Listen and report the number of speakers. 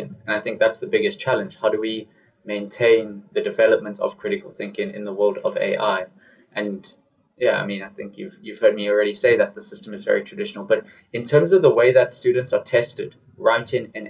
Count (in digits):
1